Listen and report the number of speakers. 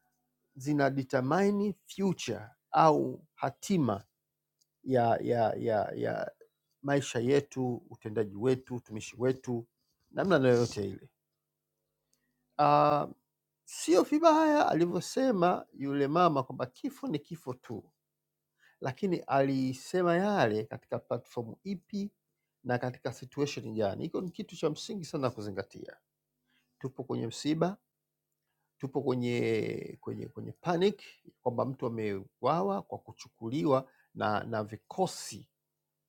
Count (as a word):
one